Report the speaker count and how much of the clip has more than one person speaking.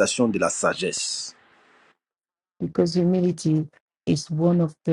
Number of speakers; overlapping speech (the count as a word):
two, no overlap